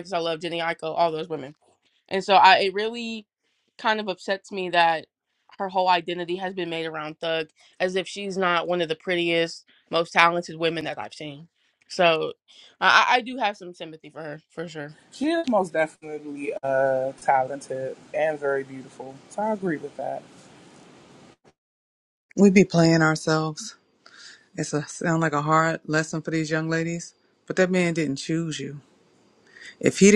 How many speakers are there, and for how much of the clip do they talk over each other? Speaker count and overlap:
3, no overlap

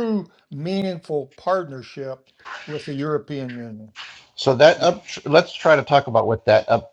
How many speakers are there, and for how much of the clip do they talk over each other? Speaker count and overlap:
2, no overlap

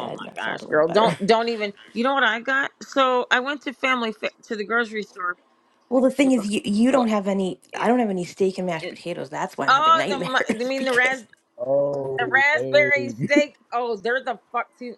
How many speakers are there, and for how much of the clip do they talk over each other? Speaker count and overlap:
3, about 28%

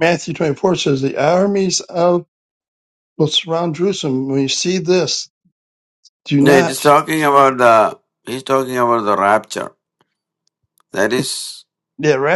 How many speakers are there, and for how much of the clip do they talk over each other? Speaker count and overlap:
2, about 4%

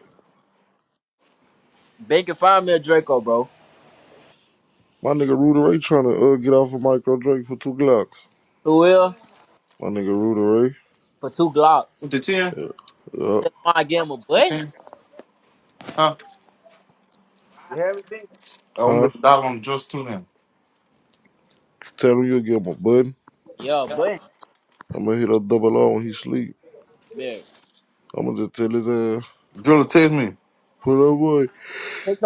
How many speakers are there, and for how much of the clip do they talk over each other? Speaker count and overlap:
3, about 2%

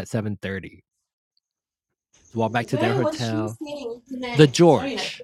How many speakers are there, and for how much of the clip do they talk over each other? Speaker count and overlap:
2, about 30%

